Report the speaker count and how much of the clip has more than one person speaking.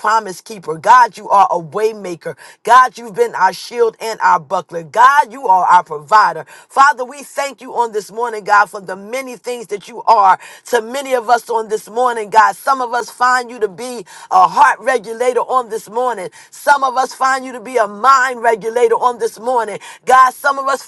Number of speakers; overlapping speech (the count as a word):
one, no overlap